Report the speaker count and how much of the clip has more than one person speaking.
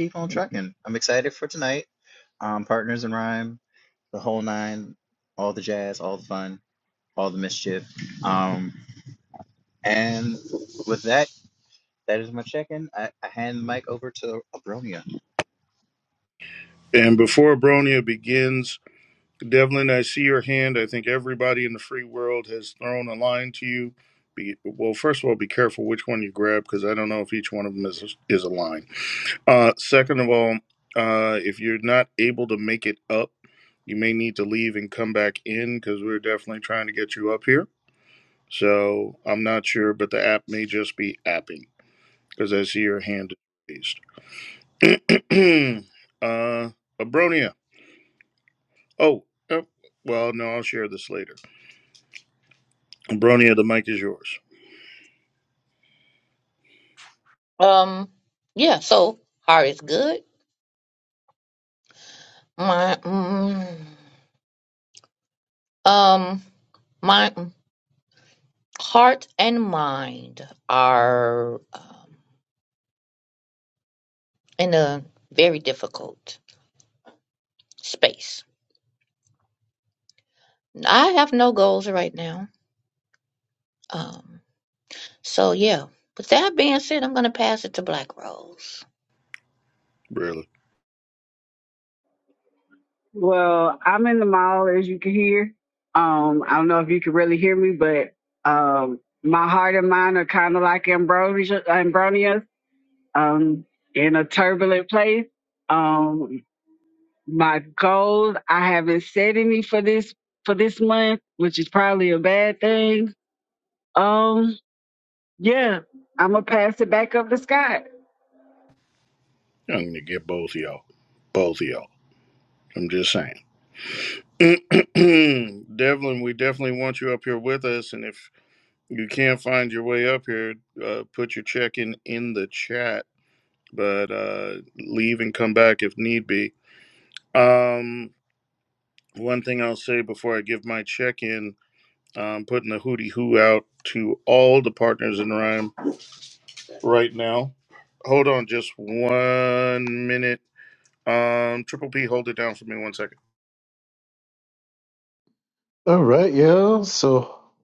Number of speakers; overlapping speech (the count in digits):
5, no overlap